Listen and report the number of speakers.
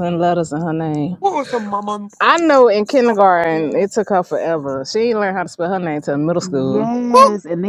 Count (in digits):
3